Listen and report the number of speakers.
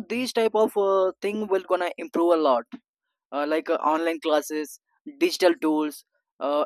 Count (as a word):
one